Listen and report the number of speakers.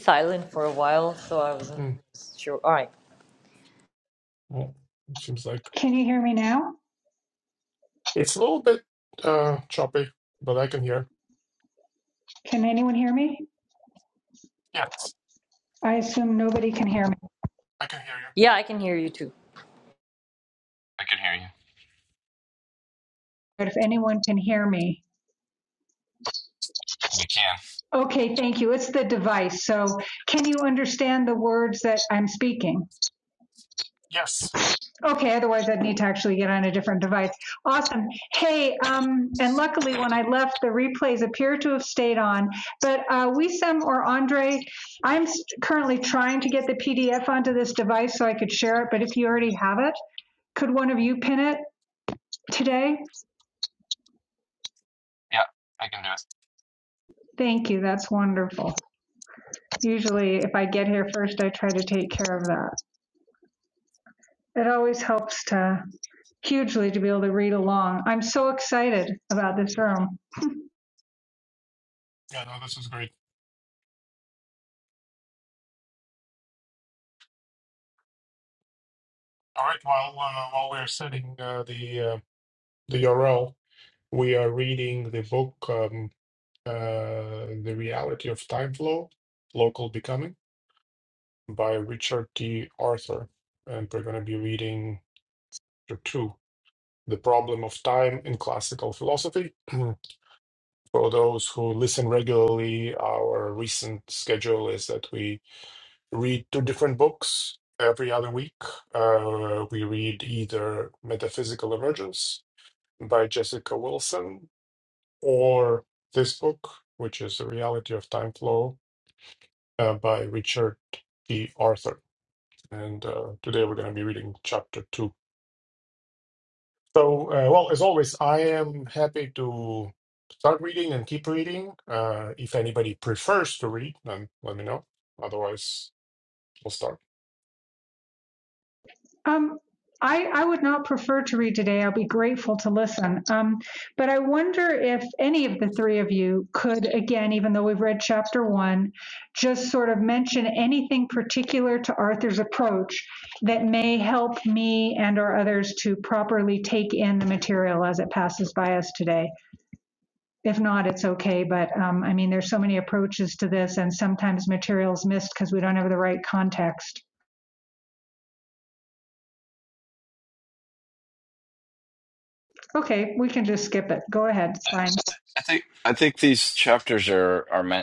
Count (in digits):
4